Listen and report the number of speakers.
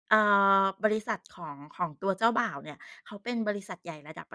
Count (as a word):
one